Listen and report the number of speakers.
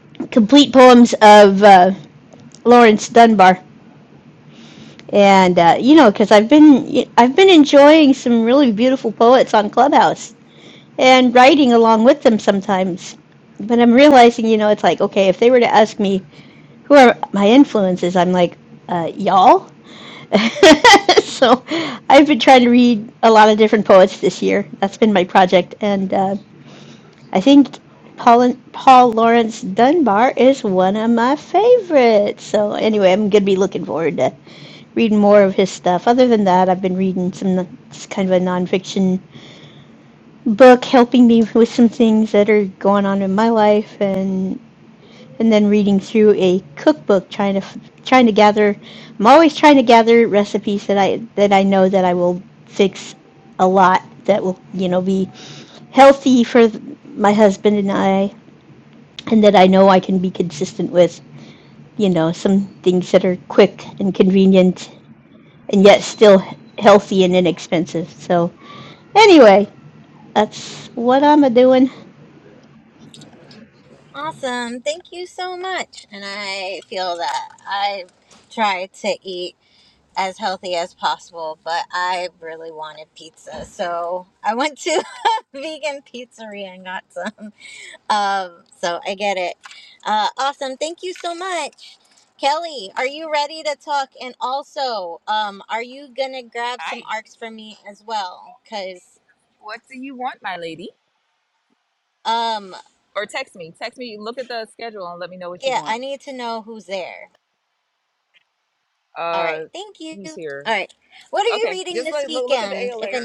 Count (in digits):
3